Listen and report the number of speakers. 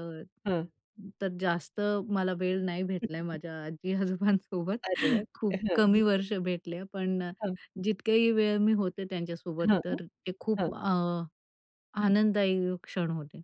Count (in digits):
2